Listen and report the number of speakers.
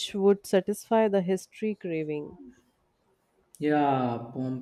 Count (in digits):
2